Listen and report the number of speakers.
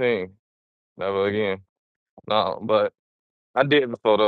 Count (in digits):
1